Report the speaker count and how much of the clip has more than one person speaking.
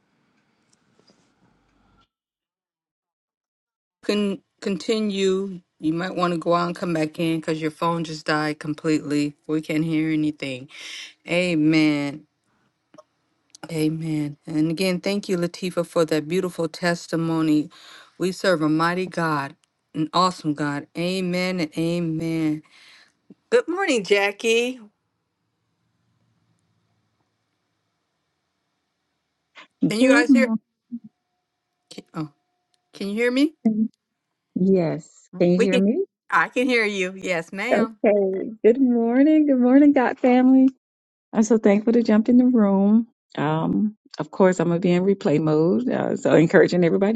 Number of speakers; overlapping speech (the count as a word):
two, about 2%